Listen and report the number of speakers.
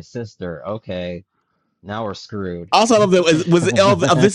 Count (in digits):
2